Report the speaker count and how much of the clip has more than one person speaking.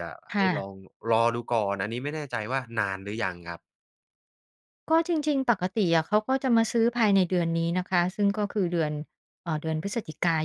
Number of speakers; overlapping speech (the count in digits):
2, about 3%